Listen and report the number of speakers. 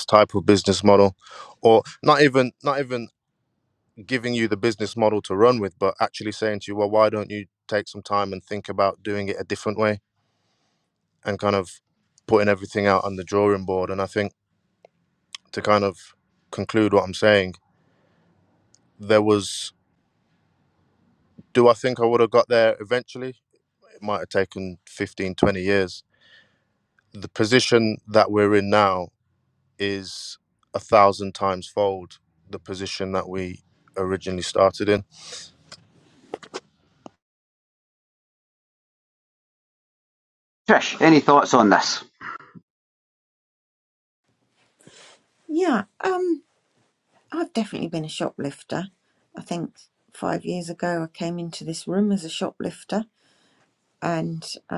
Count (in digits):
3